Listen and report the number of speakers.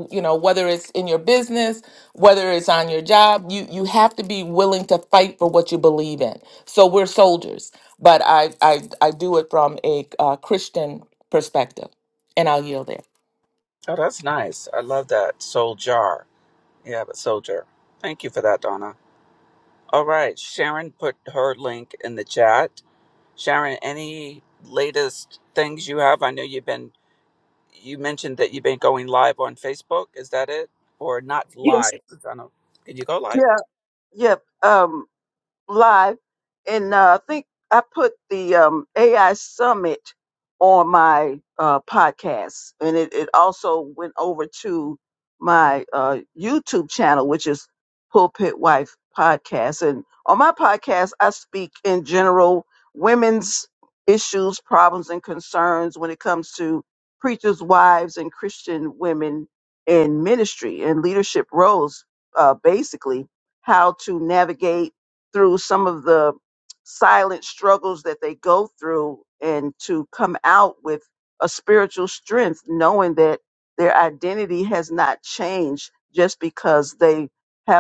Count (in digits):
3